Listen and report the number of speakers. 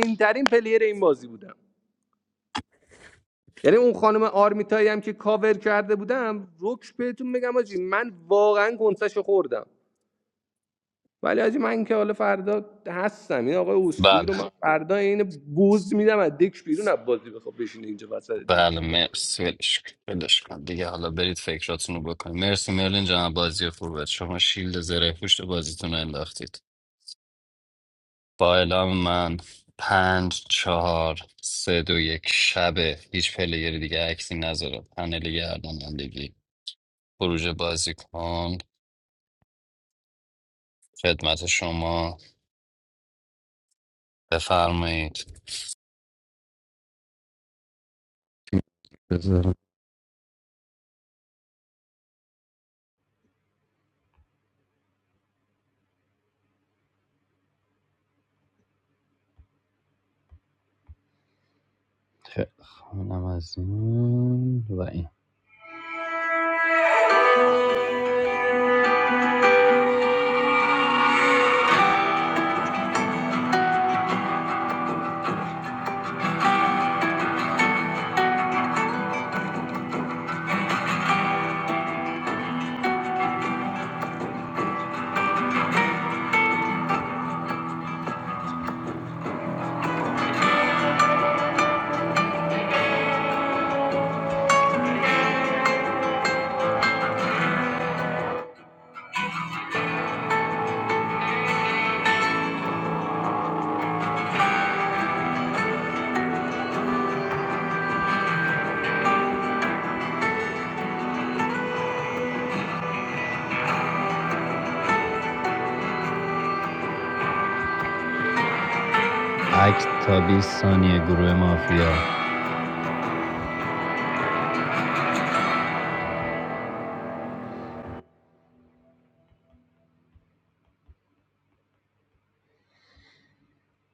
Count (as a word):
two